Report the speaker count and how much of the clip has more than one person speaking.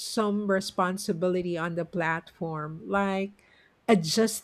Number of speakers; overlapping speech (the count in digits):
1, no overlap